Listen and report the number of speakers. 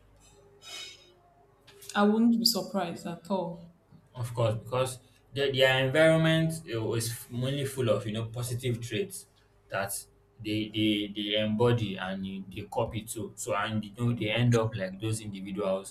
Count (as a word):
two